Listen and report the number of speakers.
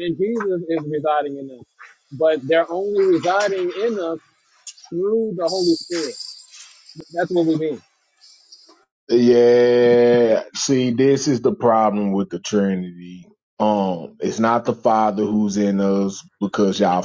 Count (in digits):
2